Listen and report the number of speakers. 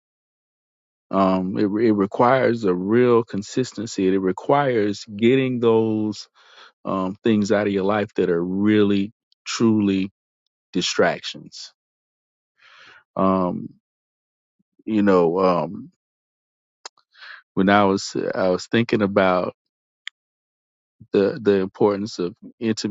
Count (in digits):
1